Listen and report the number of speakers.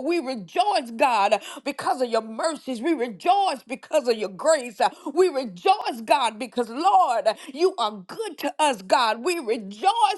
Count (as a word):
one